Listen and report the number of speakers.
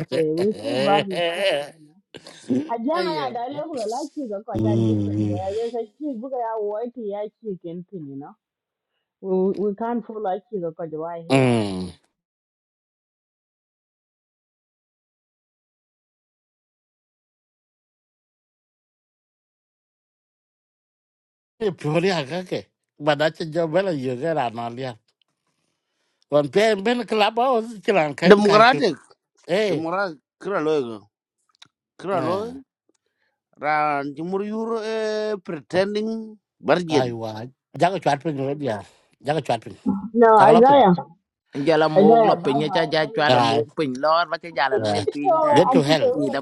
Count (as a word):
four